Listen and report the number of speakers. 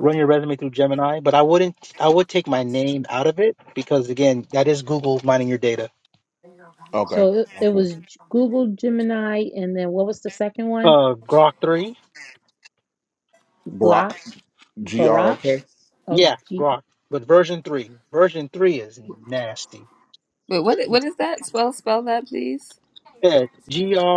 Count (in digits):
4